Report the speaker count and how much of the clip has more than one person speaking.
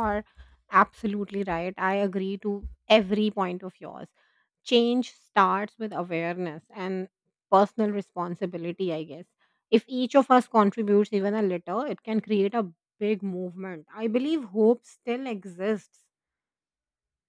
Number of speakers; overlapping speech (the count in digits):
1, no overlap